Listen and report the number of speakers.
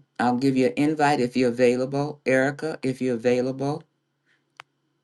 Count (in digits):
1